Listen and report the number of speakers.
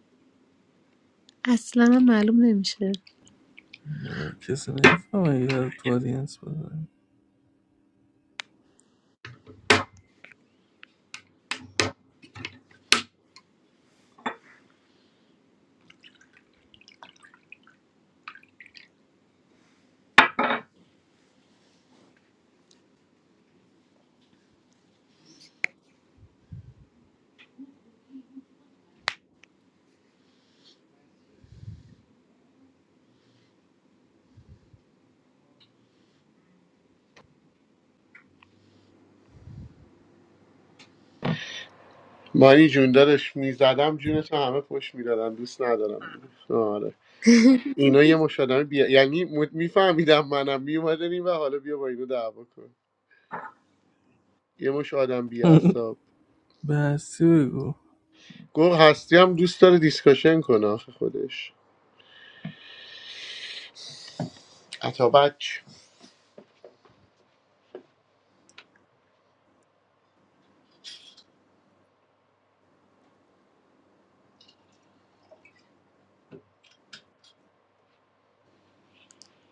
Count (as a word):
three